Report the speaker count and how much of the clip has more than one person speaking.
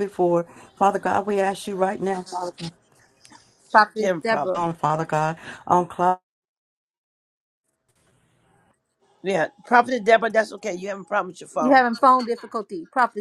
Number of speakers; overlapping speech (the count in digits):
3, about 6%